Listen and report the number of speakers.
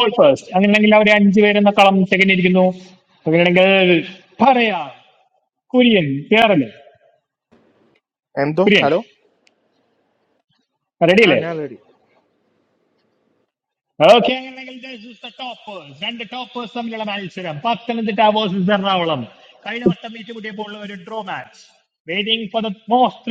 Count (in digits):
2